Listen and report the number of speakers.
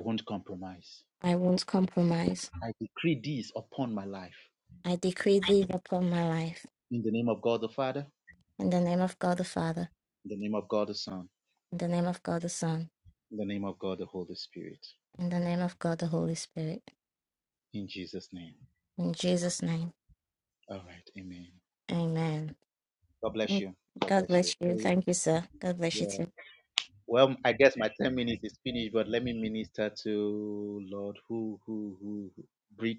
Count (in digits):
2